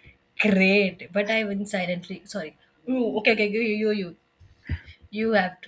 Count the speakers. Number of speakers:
1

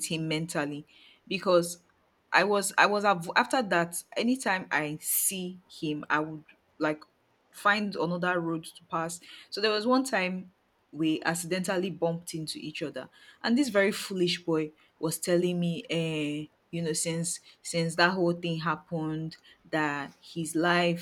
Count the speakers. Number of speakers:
1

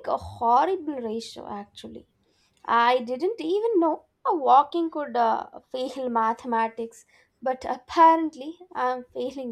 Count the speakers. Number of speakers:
1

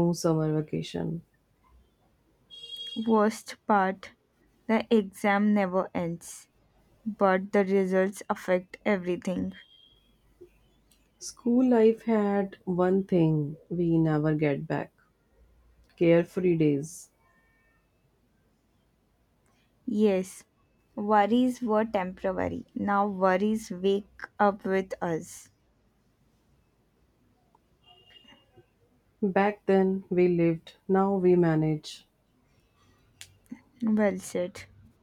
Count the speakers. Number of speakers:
2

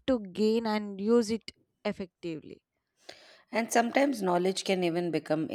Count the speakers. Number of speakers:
2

